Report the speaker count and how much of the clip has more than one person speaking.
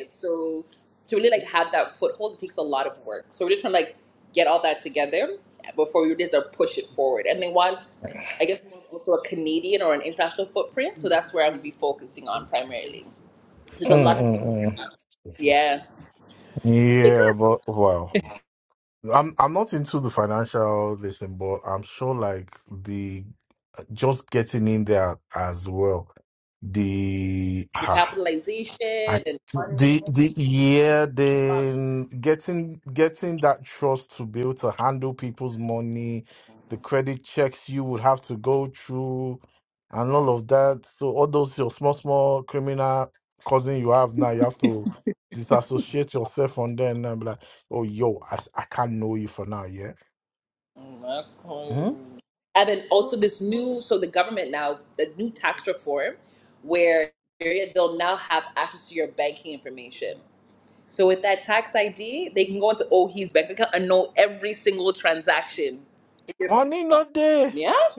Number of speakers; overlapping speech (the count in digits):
2, about 2%